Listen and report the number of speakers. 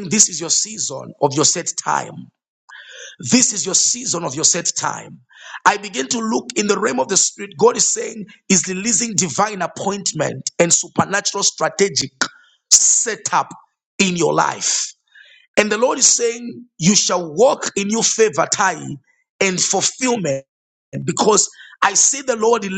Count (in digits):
1